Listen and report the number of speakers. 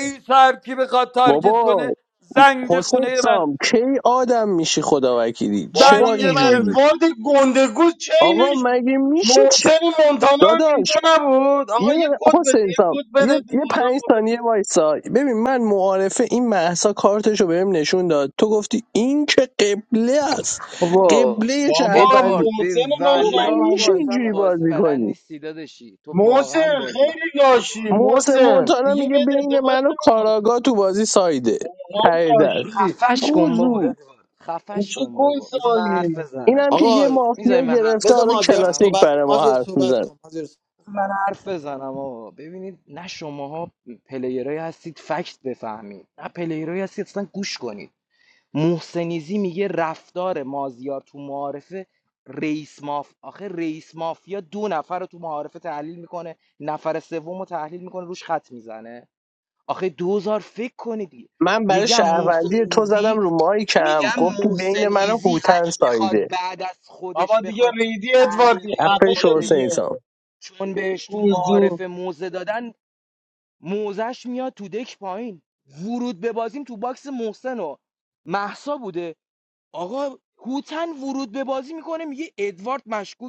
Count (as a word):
four